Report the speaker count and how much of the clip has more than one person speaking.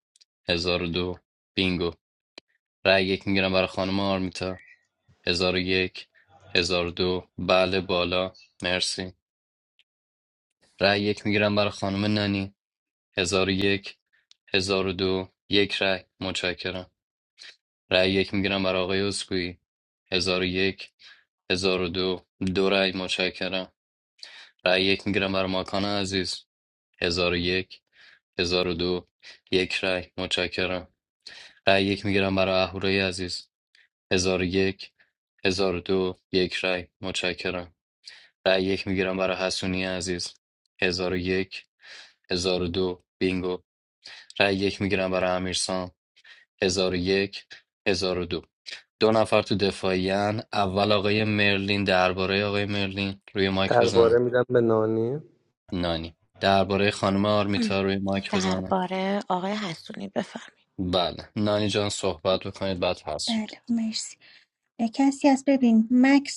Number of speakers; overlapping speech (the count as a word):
four, about 2%